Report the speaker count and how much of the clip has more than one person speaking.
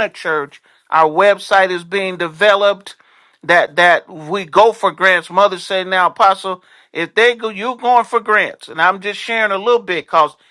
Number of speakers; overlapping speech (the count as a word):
one, no overlap